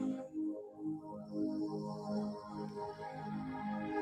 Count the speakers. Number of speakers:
0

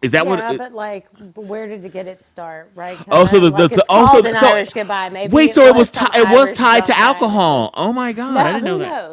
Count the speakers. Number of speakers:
2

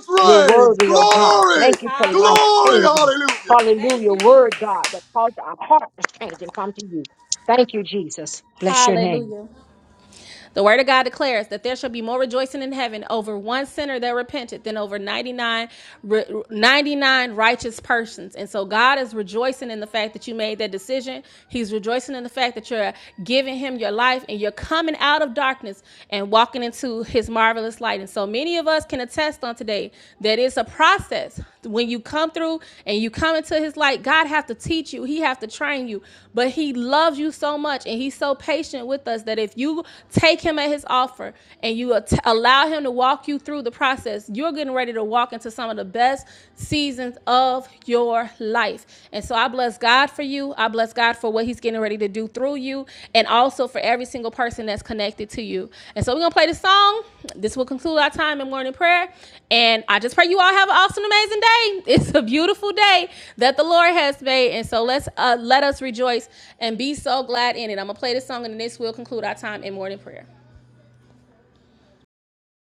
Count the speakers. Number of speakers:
3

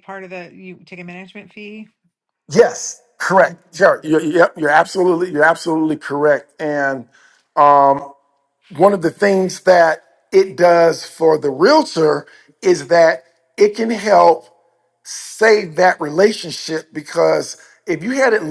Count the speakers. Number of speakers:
2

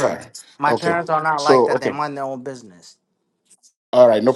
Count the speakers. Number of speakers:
2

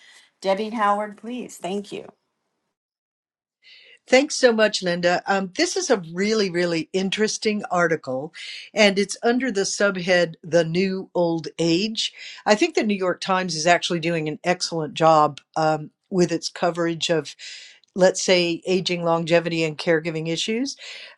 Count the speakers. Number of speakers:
2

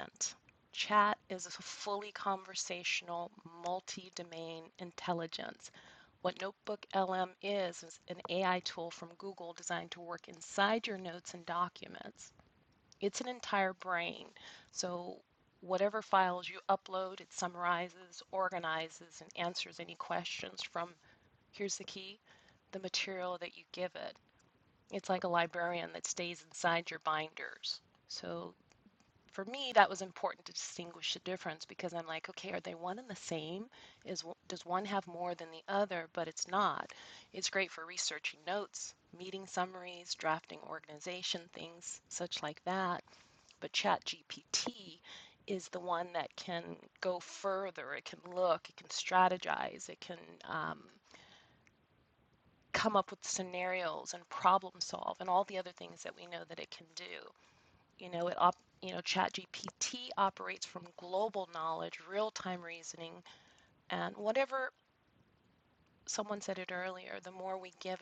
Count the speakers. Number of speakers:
1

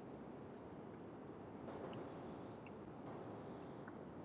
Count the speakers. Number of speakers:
0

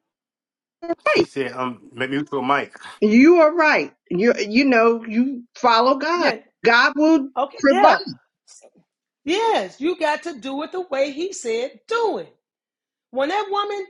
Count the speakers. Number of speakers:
3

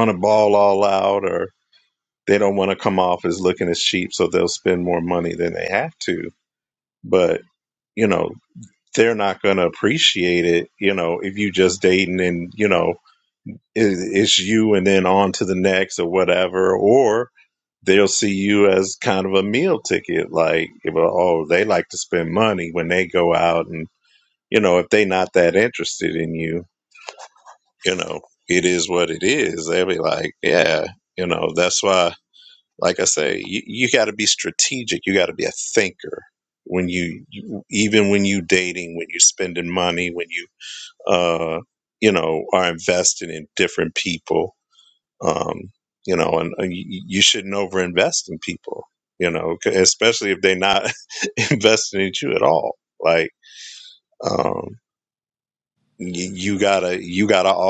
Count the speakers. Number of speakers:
1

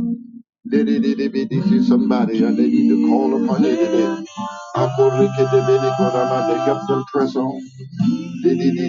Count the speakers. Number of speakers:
1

